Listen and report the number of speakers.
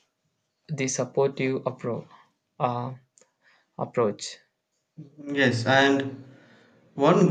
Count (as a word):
two